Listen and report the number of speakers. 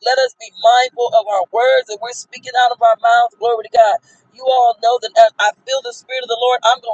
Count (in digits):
1